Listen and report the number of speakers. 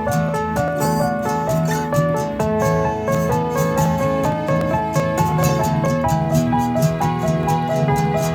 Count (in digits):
0